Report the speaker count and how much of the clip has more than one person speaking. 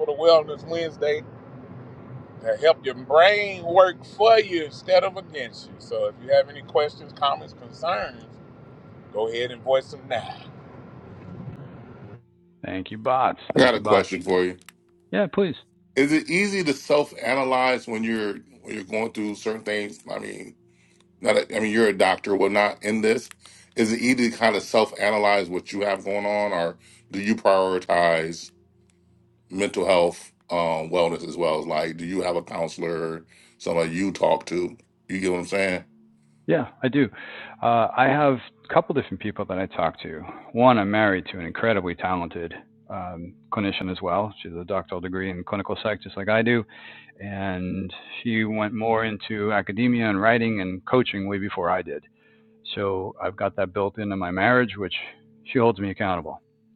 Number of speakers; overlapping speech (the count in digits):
3, about 1%